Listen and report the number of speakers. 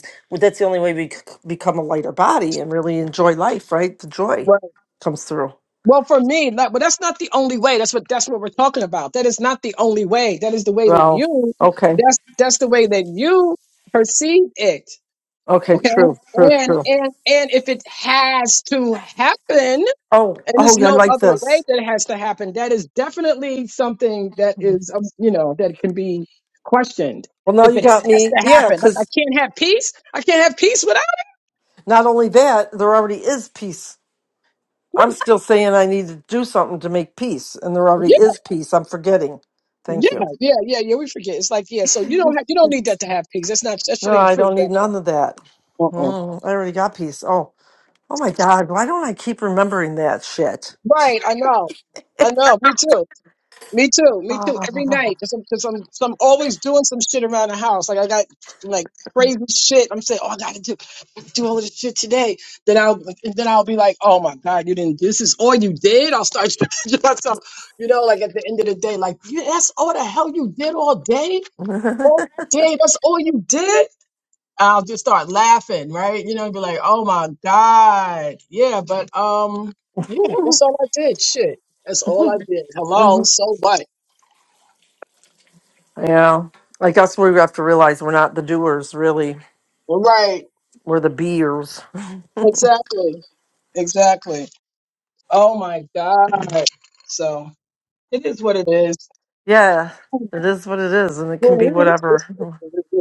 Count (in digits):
2